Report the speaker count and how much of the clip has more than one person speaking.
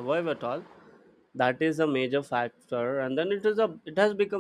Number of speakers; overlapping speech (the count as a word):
one, no overlap